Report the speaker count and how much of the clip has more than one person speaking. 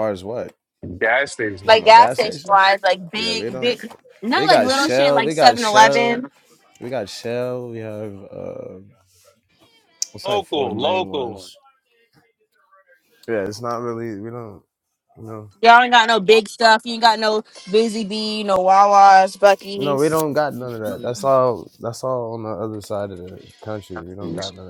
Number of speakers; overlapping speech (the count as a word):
three, about 20%